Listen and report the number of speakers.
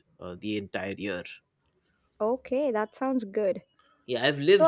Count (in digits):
2